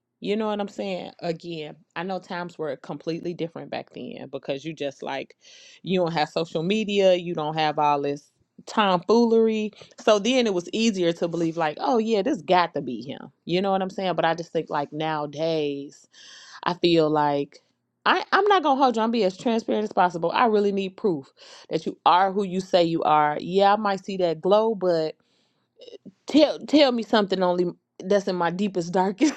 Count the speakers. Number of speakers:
one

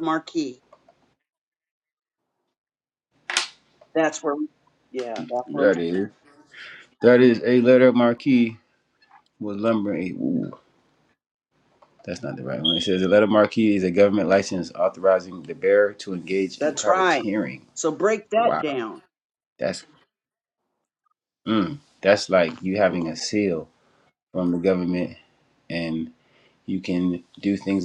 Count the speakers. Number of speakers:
two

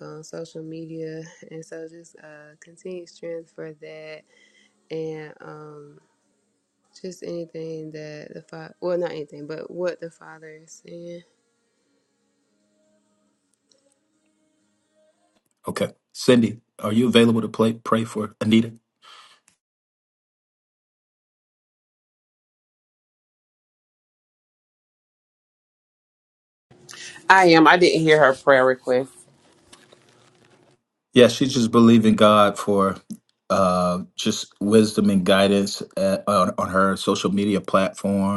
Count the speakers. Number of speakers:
three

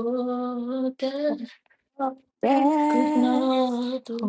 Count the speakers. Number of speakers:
two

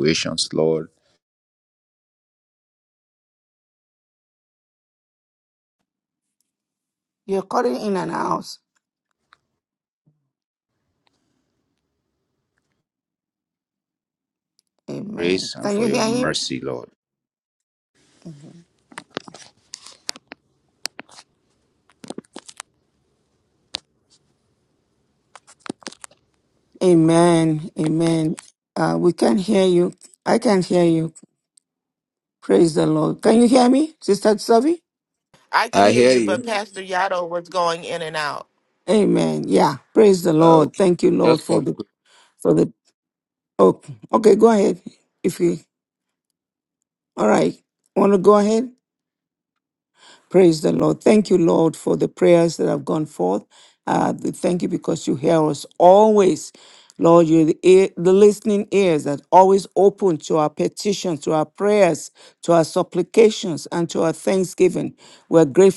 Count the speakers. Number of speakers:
three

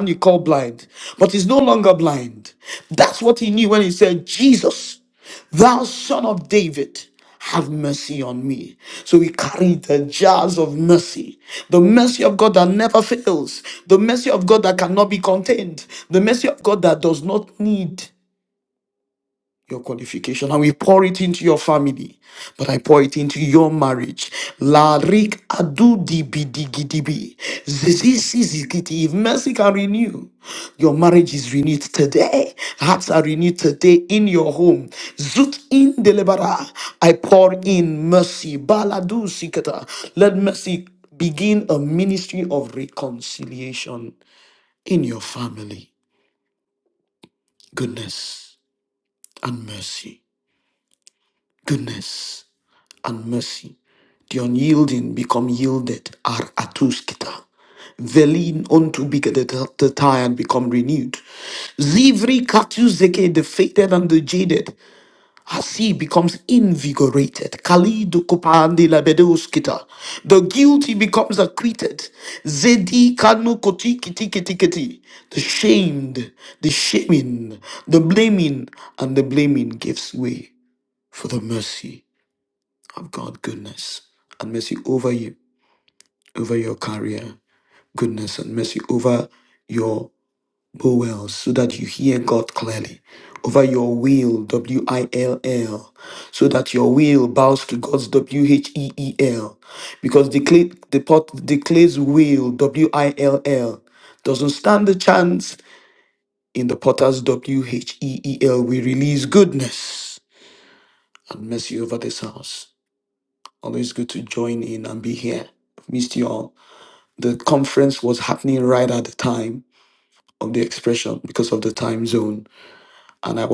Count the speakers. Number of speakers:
one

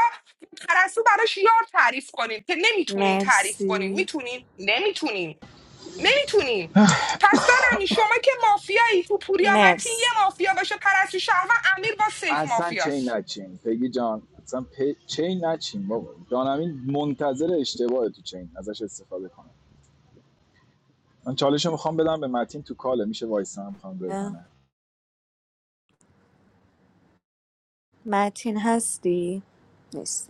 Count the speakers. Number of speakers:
three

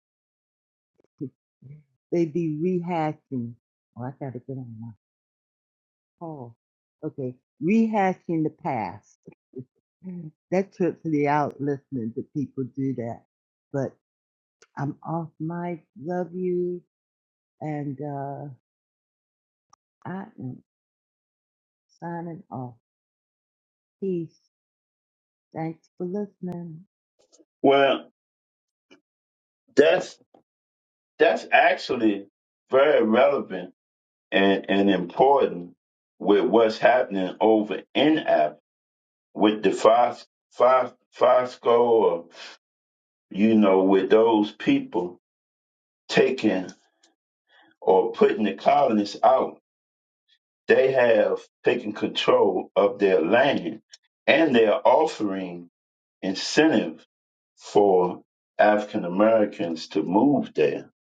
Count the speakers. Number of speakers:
two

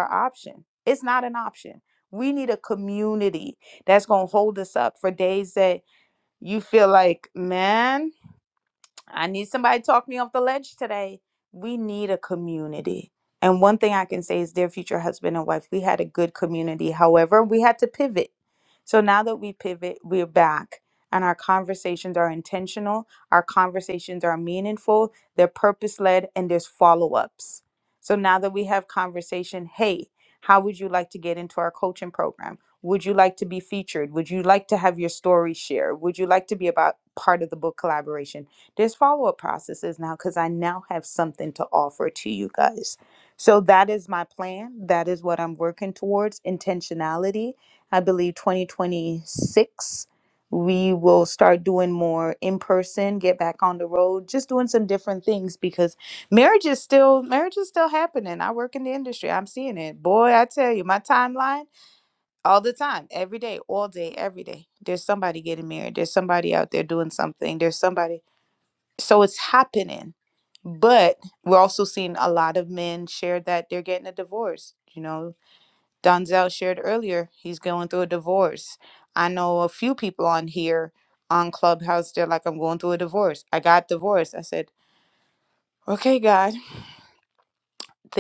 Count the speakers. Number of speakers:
one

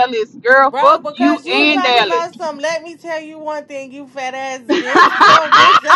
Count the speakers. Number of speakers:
two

